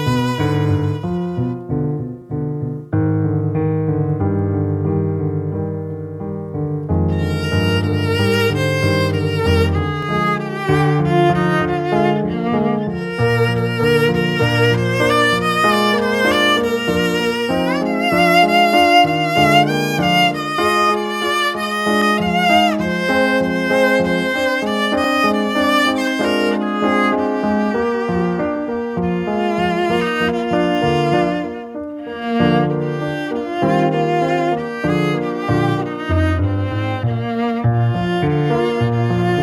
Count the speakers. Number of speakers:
one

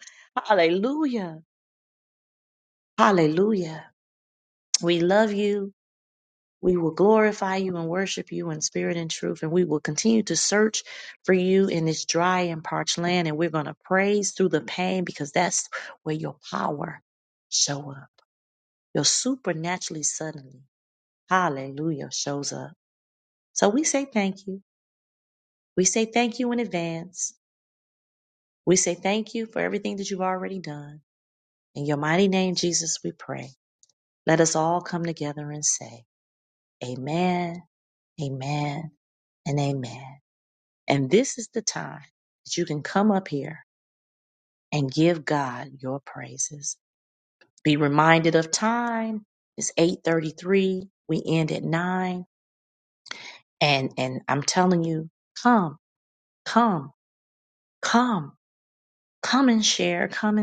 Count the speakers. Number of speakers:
one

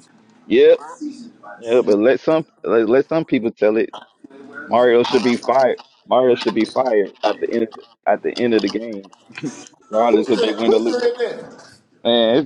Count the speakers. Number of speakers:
two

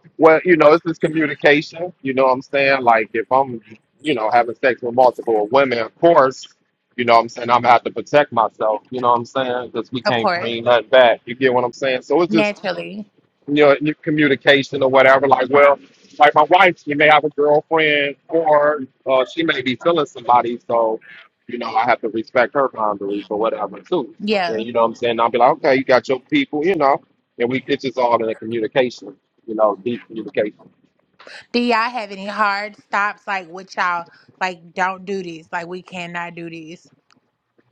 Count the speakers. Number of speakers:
two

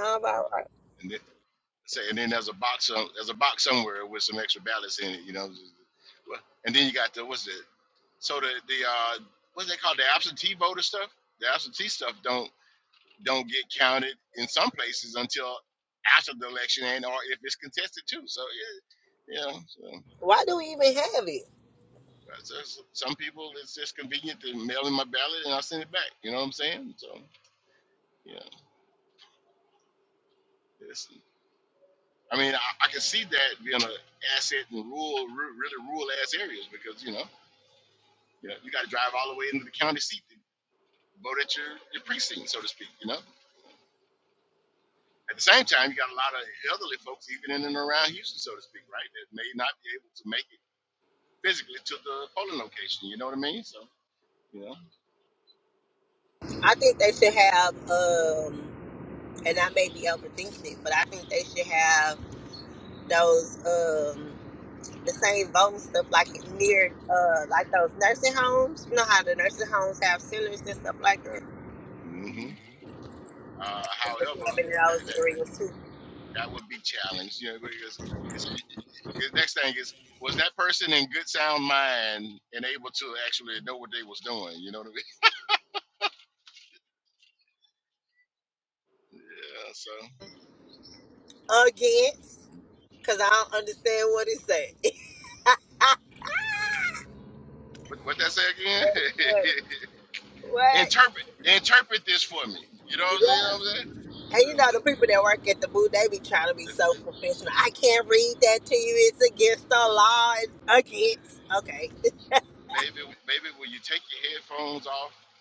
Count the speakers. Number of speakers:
two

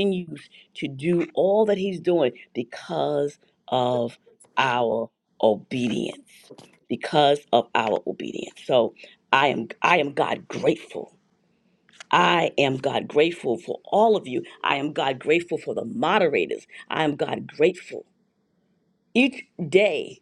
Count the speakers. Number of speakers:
one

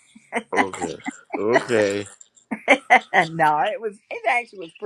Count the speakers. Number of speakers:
two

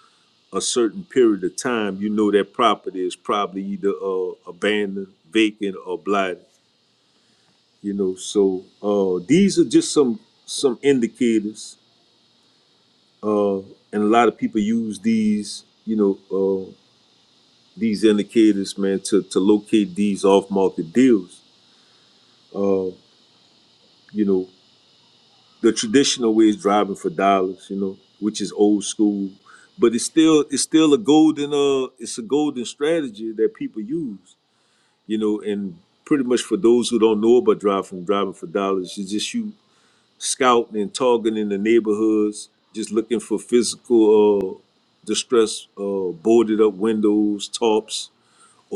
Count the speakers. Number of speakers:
one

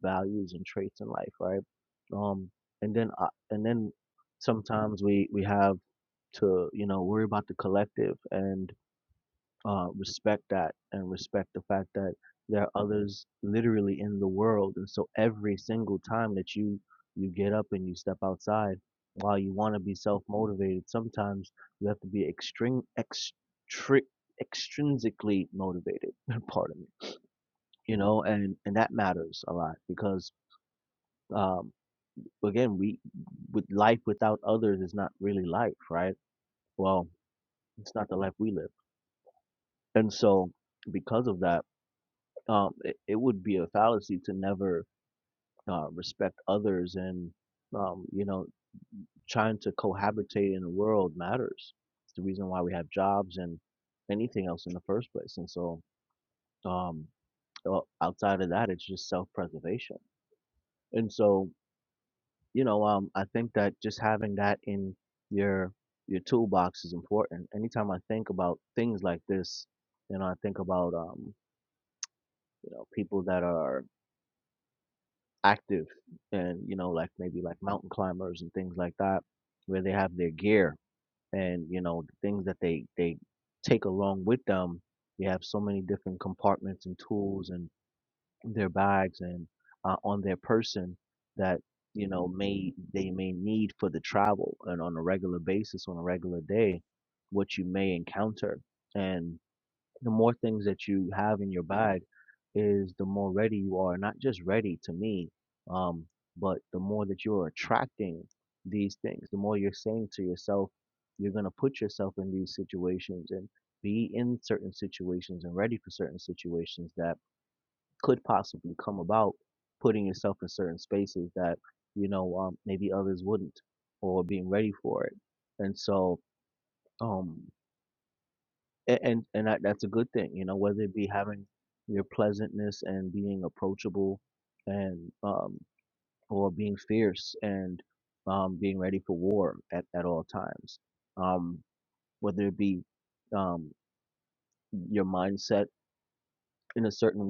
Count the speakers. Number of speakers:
one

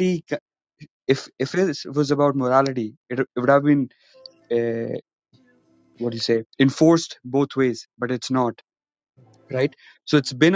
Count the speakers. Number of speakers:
one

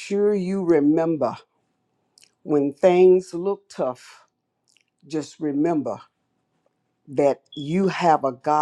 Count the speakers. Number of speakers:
one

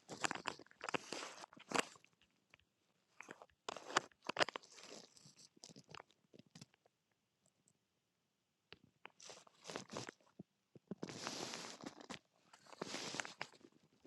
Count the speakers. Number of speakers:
zero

